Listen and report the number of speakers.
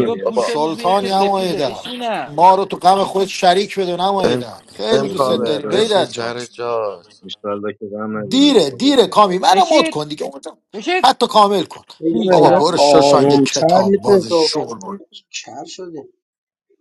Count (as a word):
five